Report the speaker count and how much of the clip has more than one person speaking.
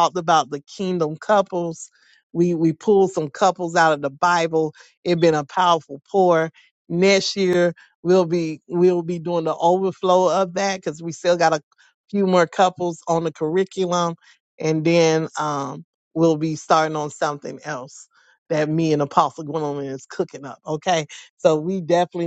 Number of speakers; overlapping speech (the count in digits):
1, no overlap